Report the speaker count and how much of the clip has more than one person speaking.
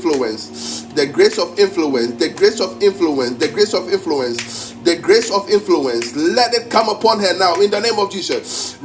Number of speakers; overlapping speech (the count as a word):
one, no overlap